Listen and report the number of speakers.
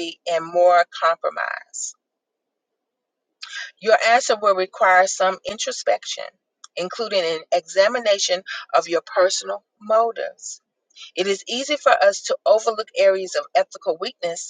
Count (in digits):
1